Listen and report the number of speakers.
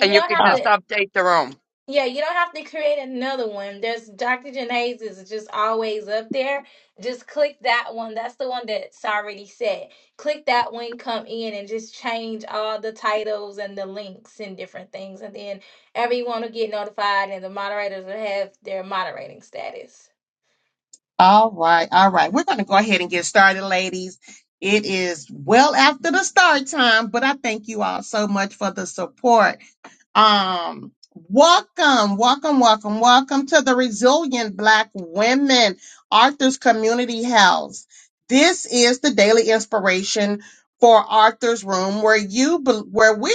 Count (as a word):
three